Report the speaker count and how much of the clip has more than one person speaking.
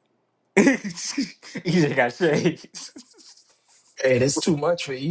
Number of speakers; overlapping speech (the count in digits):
2, no overlap